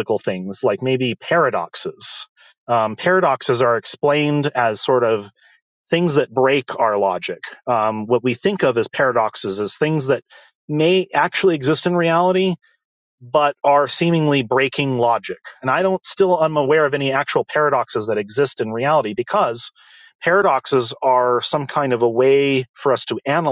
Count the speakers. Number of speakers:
one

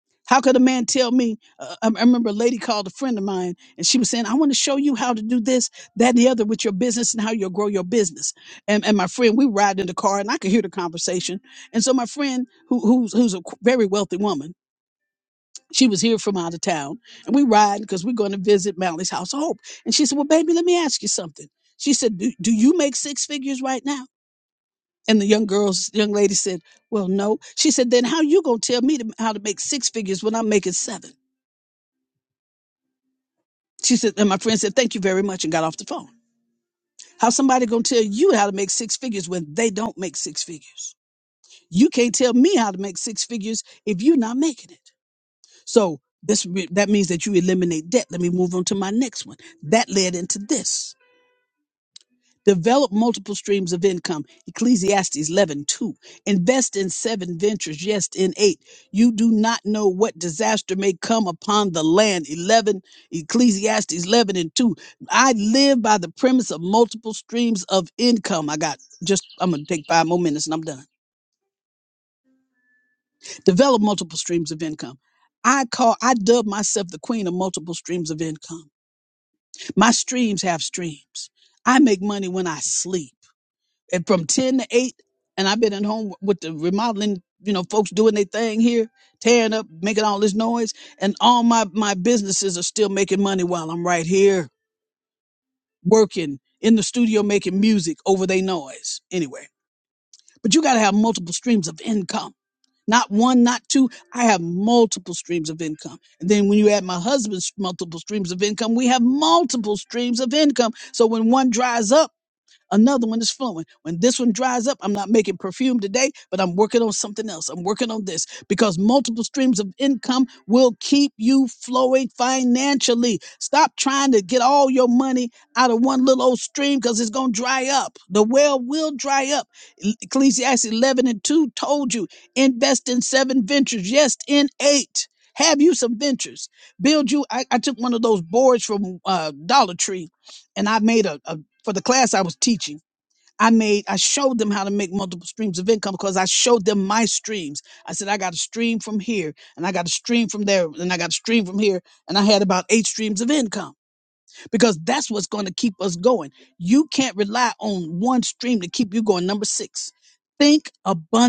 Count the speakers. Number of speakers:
one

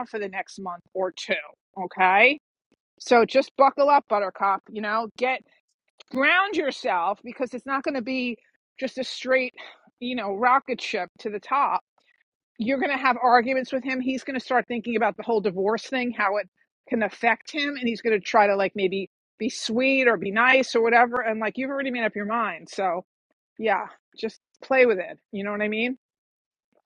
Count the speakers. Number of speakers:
one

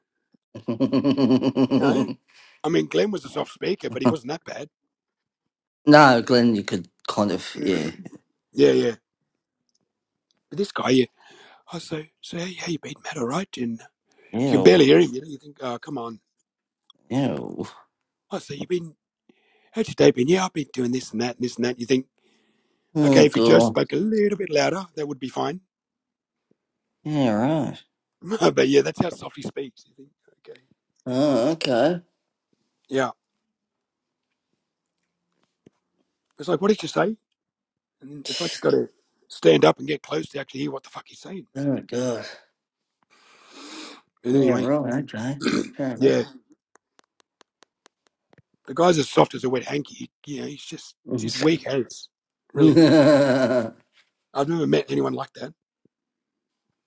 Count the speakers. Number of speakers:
two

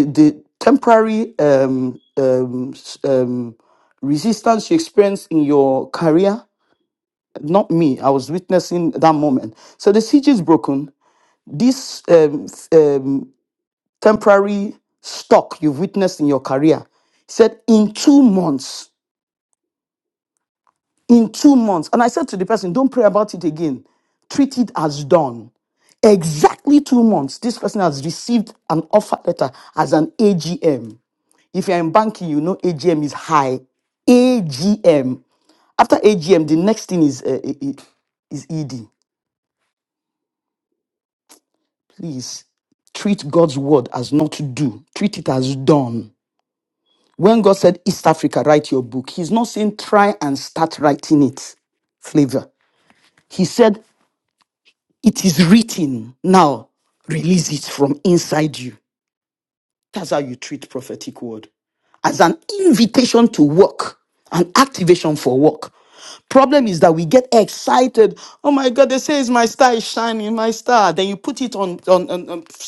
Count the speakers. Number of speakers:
one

